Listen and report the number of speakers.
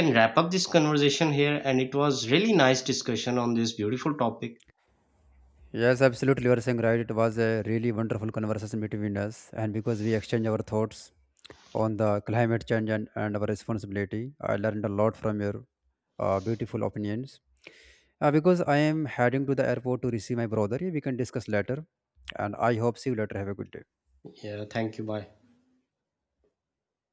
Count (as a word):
two